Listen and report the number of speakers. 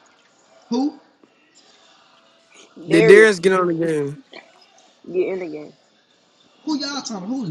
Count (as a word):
three